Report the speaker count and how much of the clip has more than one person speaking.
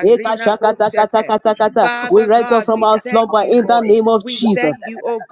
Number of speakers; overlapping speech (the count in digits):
2, about 66%